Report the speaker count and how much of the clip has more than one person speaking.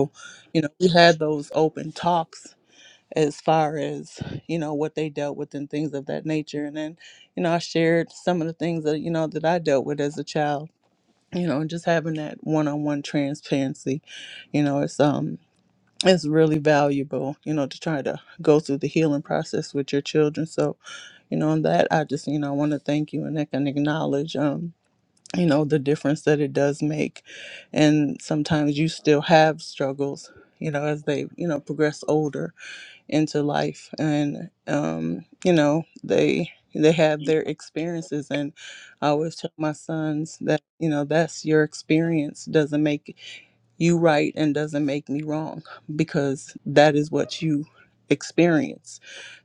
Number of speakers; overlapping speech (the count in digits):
1, no overlap